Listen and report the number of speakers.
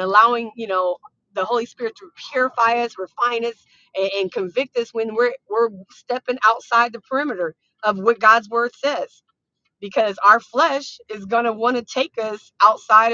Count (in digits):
1